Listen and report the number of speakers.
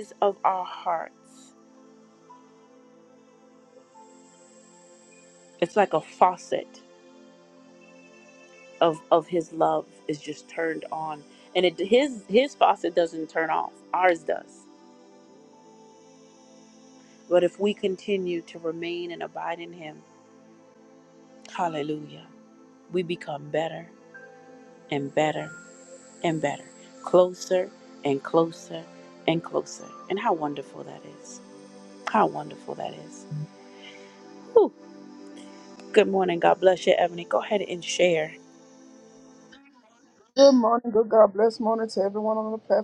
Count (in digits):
2